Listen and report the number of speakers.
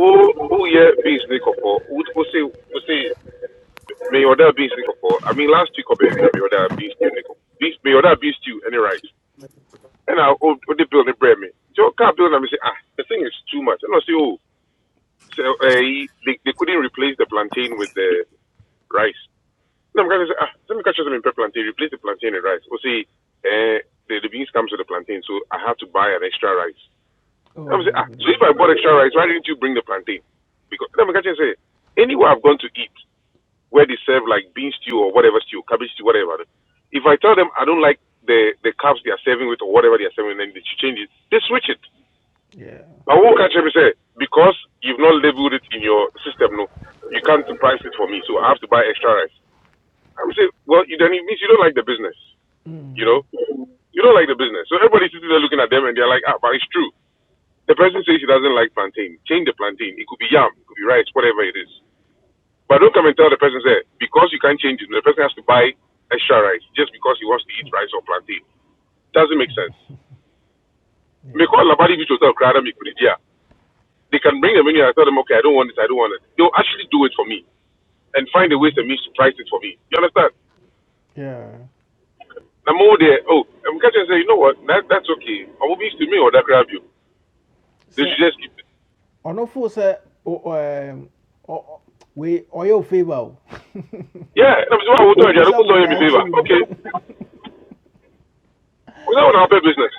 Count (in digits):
2